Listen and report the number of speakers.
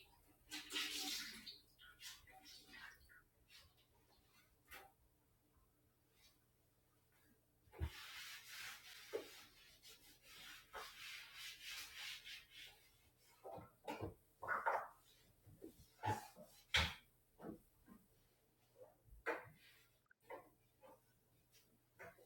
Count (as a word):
zero